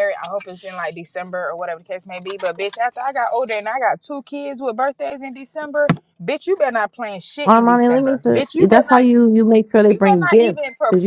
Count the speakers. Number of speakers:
2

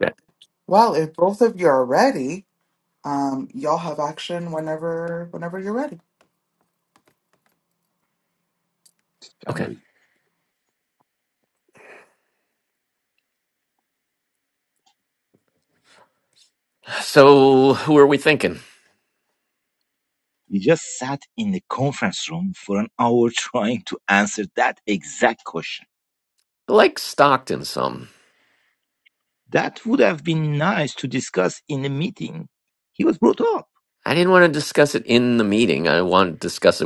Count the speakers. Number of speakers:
3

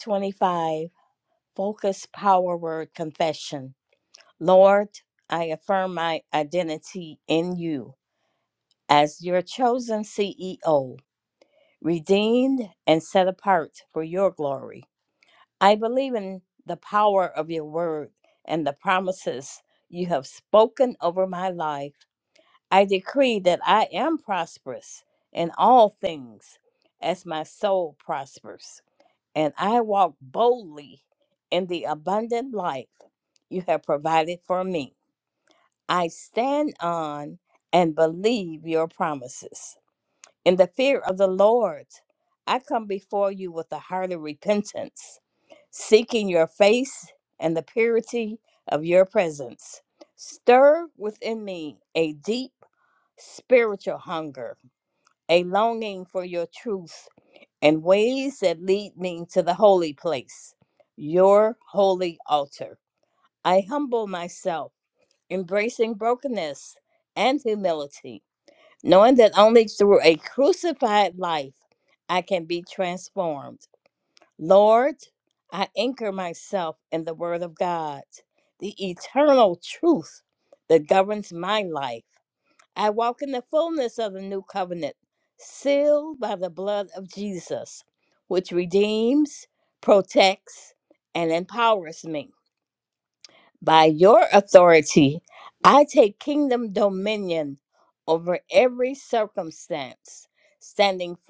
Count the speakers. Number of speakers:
1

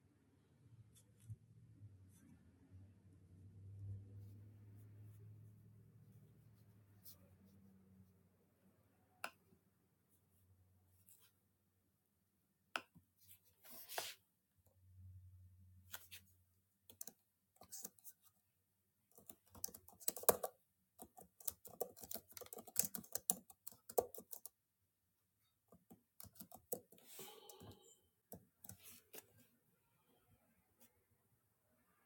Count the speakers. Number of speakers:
0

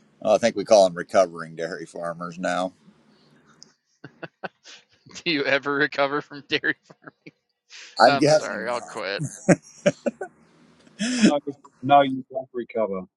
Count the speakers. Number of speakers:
3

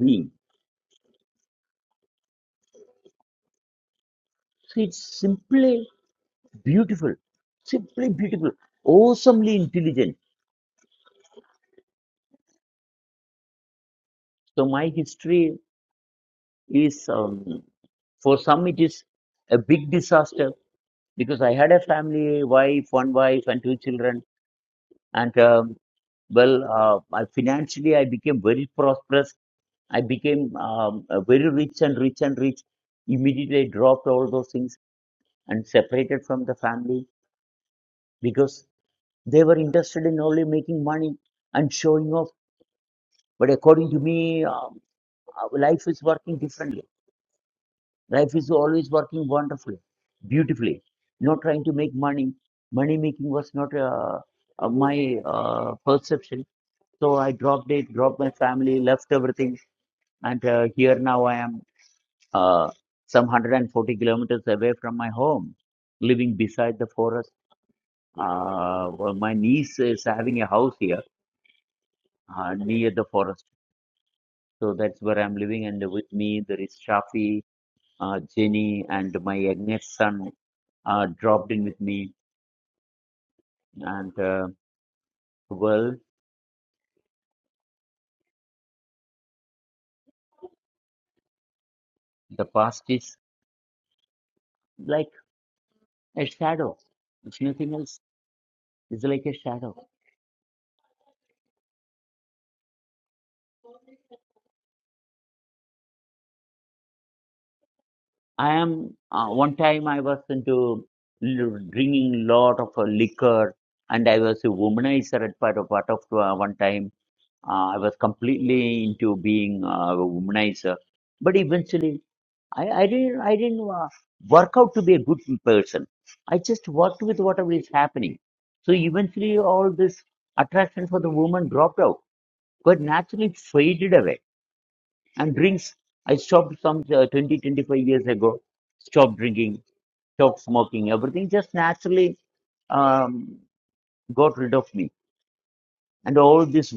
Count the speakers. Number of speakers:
1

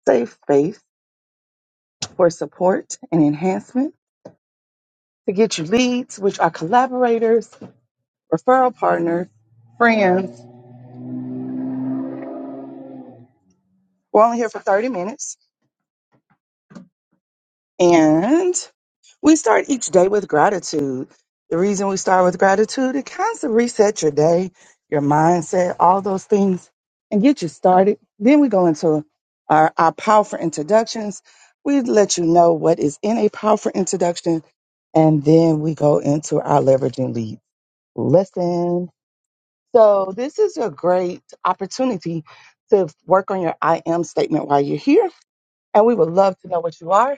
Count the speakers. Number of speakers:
1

